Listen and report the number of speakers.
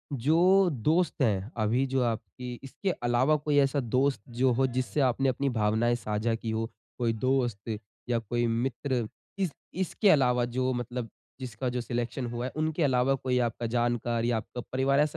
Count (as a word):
one